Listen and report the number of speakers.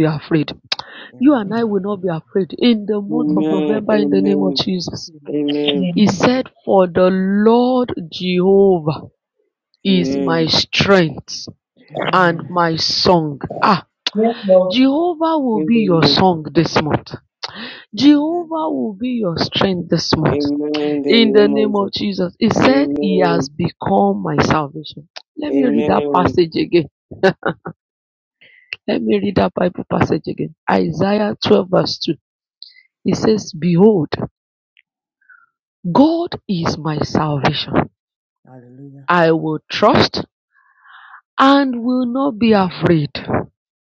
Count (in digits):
4